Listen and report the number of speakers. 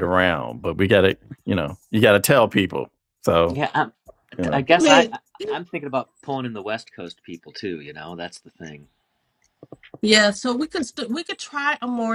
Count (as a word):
three